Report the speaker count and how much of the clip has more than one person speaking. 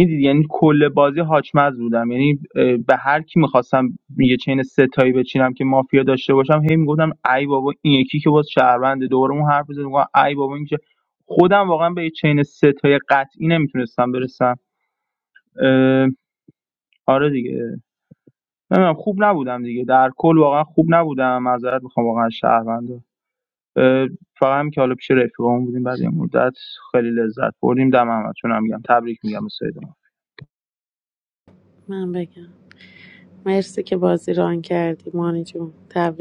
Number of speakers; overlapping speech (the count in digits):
2, no overlap